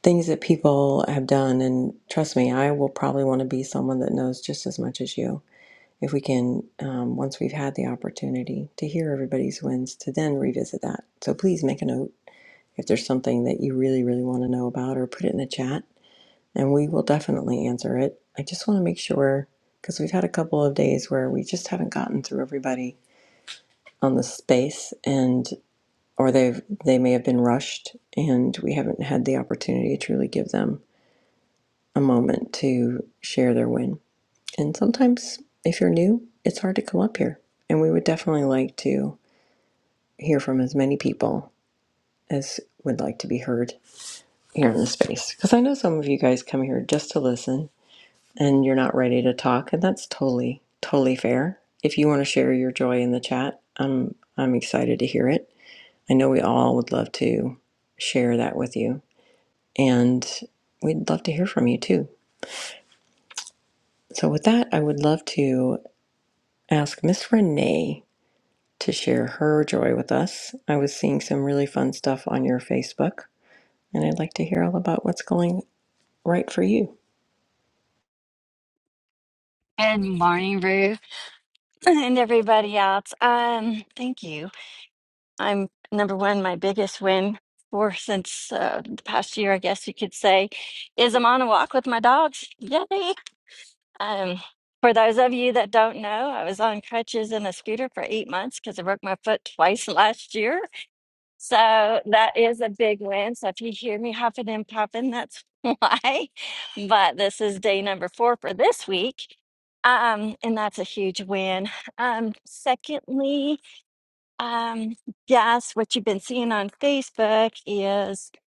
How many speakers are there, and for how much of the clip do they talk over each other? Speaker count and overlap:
two, no overlap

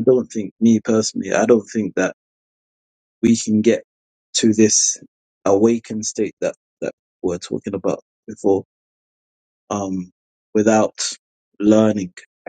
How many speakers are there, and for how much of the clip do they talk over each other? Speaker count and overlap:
one, no overlap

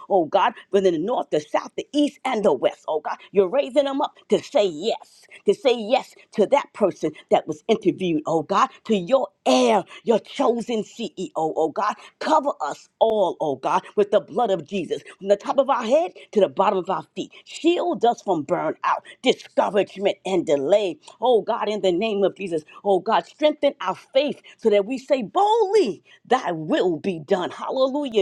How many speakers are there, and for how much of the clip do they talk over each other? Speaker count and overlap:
one, no overlap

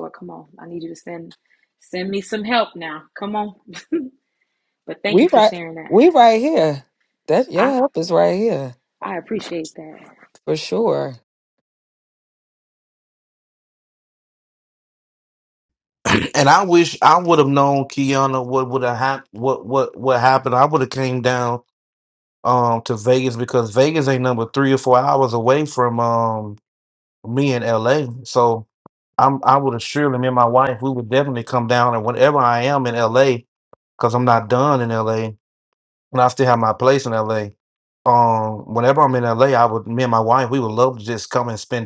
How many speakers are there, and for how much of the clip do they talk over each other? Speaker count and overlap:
three, about 3%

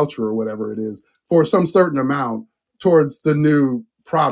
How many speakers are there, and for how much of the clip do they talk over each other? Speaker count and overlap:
one, no overlap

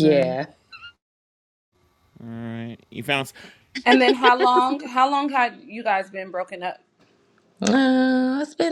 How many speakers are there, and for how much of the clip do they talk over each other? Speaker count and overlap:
three, about 4%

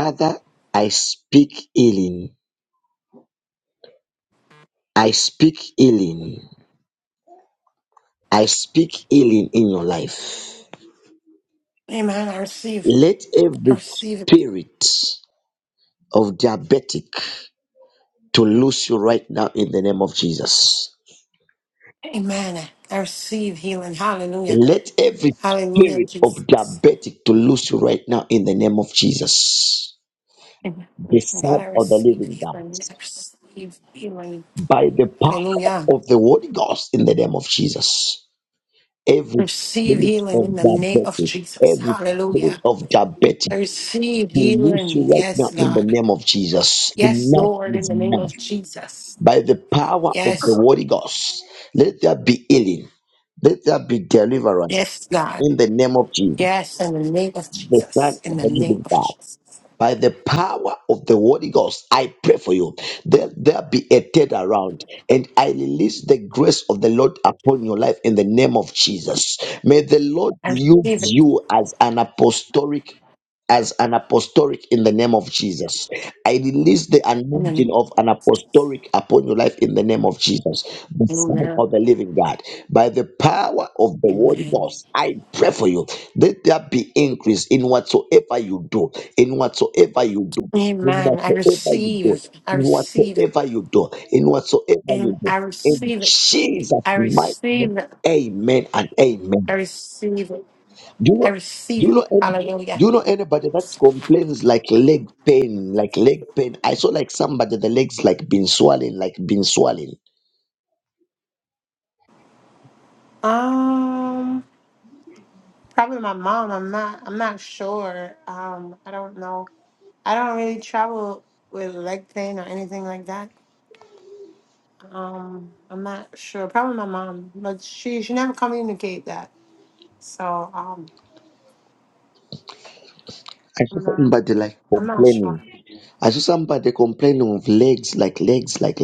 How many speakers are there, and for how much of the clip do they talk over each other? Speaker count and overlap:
two, about 14%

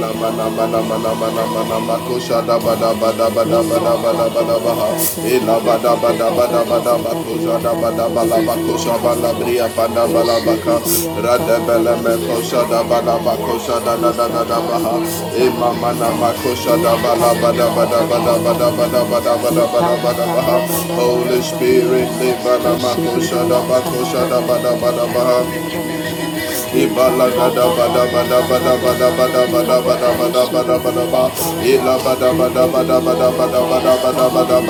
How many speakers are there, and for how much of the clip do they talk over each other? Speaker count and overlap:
two, about 72%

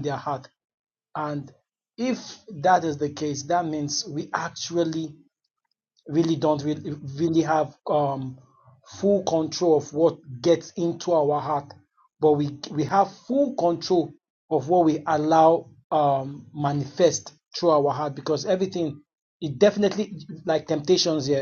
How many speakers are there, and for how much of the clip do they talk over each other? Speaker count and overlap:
one, no overlap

